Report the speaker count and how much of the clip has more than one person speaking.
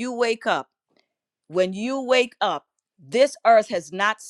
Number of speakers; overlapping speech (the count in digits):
1, no overlap